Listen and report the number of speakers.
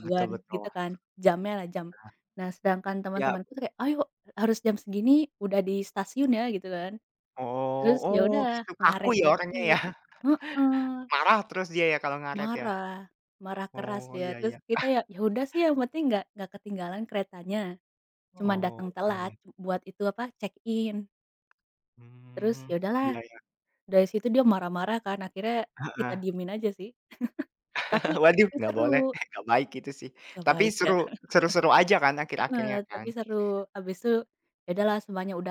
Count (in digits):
2